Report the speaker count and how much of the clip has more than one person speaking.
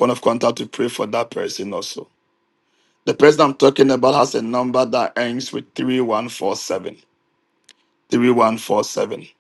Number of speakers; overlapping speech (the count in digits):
1, no overlap